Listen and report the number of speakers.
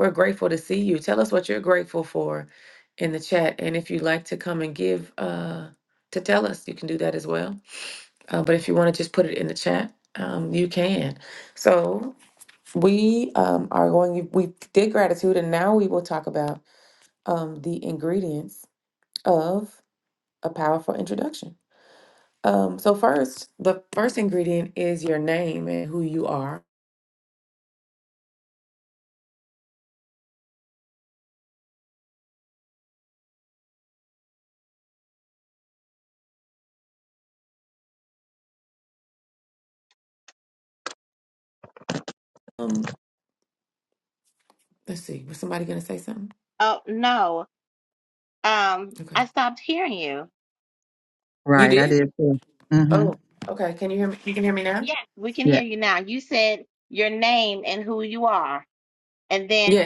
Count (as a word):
three